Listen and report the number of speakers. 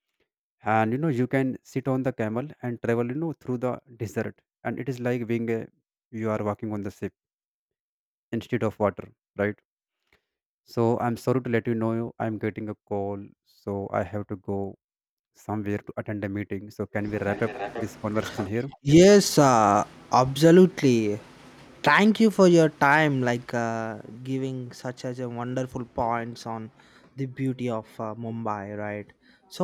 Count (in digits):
2